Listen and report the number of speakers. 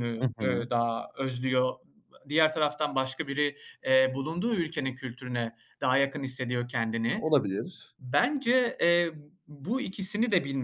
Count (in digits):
2